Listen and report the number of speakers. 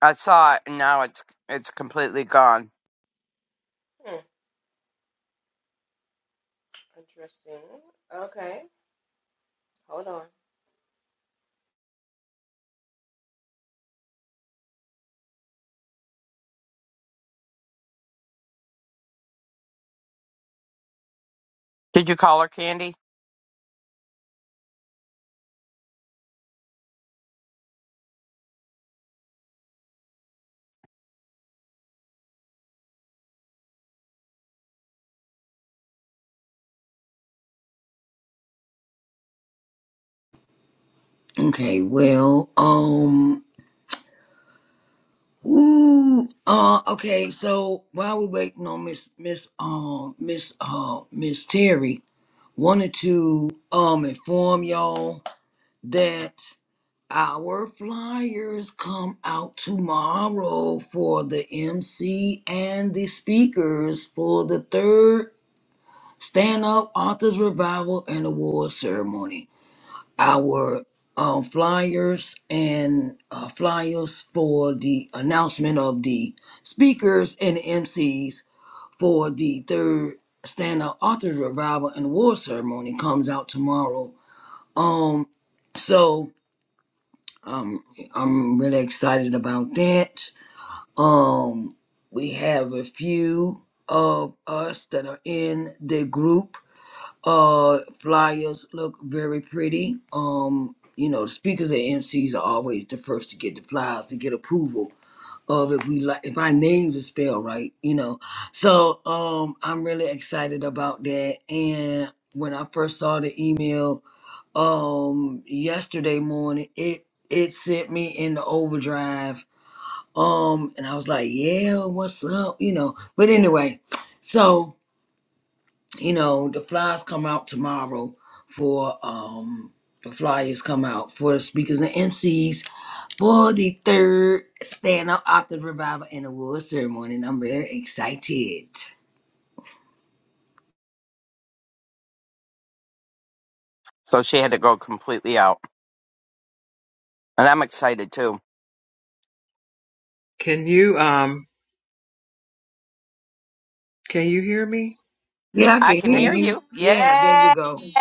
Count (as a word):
four